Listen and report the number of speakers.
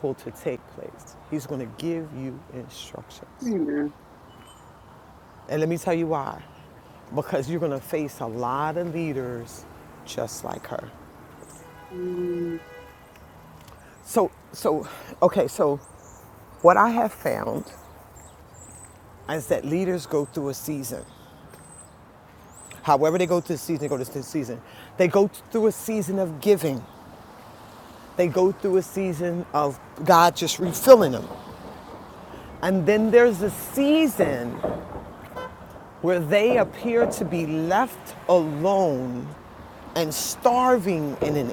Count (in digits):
2